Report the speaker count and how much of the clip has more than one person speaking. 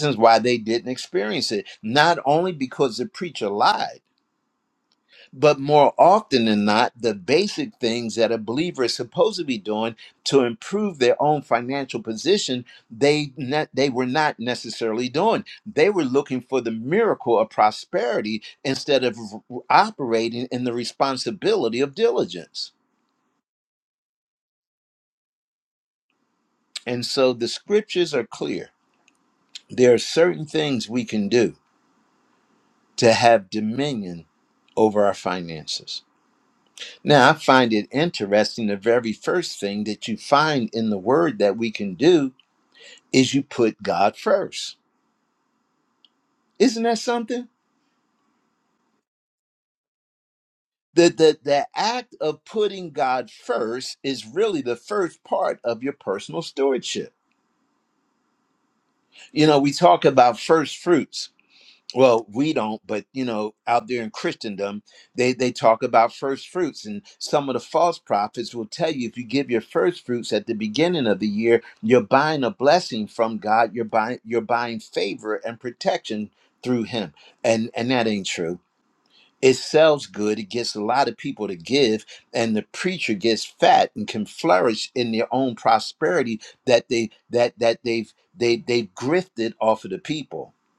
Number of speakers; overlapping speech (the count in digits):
1, no overlap